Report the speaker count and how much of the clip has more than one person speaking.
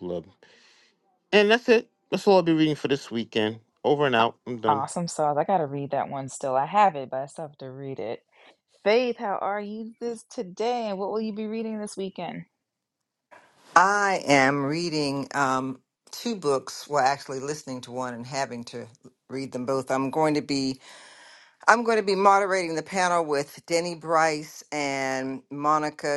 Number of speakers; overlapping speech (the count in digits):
3, about 1%